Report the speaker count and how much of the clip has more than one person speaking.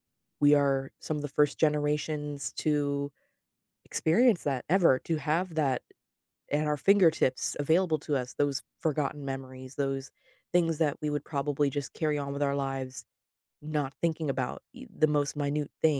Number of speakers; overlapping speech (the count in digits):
1, no overlap